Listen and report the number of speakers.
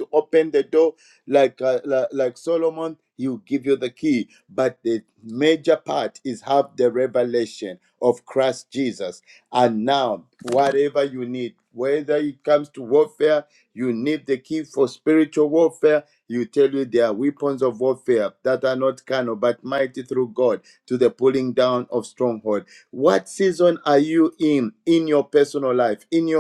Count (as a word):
one